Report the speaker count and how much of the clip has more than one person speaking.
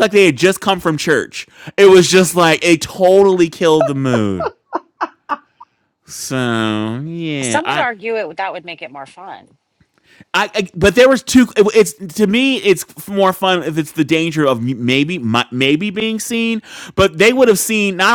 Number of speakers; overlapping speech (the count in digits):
2, about 2%